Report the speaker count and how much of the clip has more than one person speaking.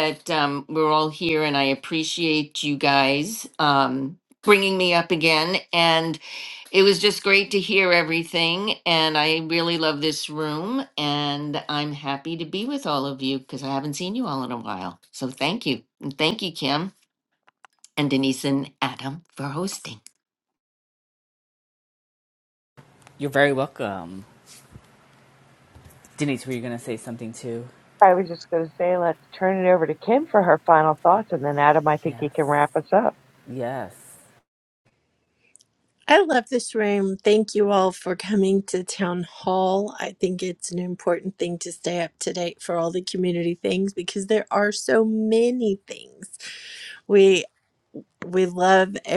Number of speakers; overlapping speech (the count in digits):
4, under 1%